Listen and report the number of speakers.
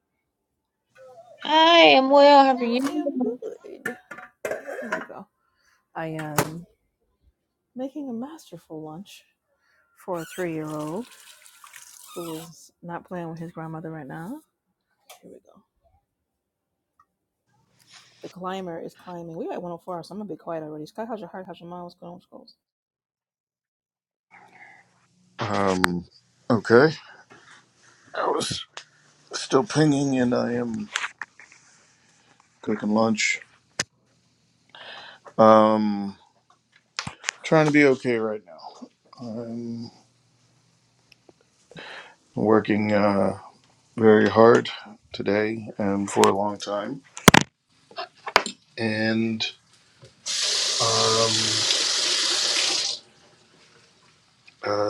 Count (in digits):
3